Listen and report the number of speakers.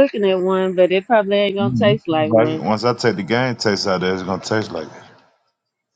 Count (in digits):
2